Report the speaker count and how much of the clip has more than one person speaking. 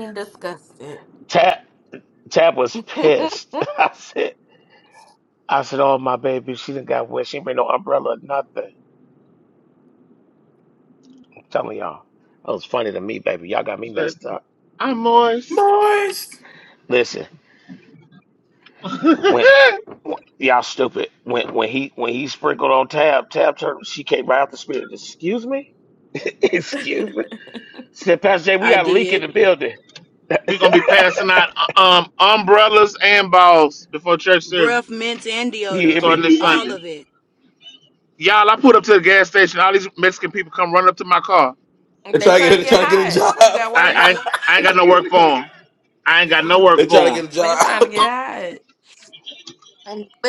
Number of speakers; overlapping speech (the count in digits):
5, about 9%